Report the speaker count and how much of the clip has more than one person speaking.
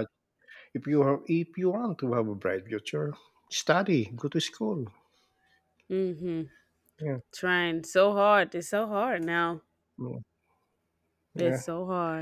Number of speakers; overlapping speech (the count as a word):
two, about 2%